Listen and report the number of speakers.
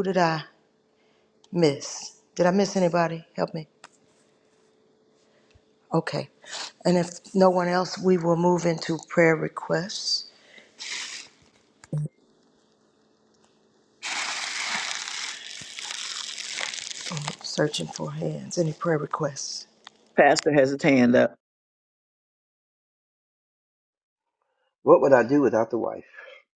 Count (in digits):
3